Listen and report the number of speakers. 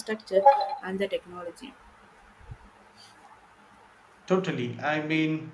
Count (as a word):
two